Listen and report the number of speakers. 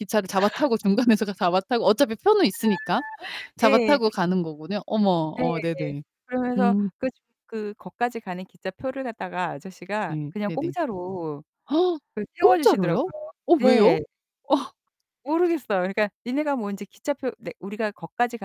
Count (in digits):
2